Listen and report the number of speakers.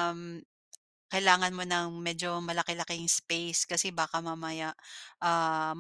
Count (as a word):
one